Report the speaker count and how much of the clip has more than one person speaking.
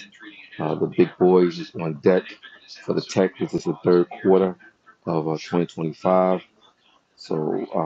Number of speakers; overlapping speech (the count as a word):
one, no overlap